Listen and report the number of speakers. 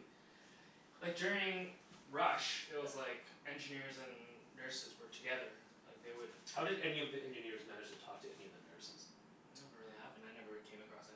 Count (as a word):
two